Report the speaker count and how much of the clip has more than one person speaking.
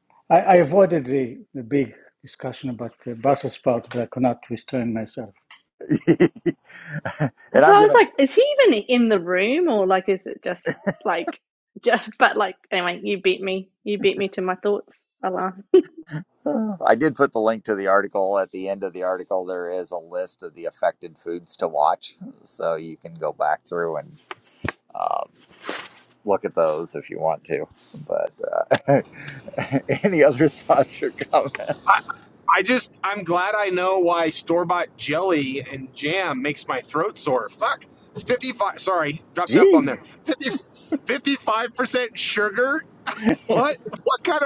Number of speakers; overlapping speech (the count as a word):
four, about 2%